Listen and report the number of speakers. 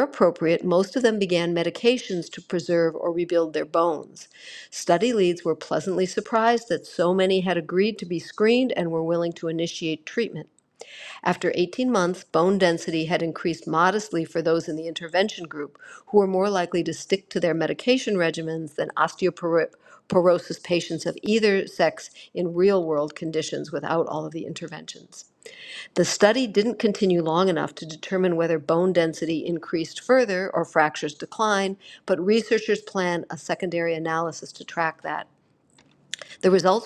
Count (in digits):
1